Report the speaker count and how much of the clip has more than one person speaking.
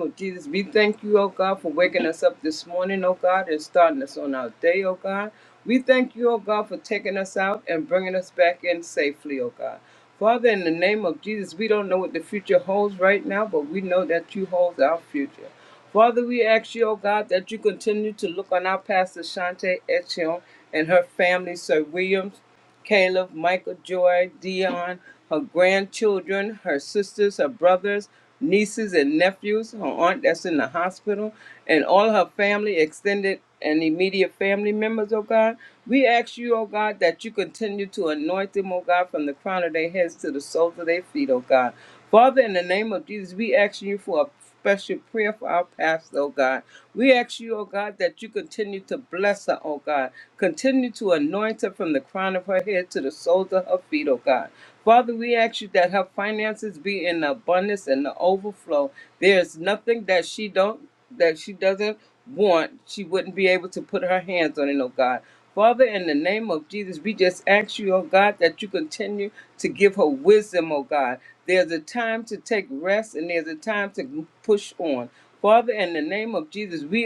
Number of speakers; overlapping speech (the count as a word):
one, no overlap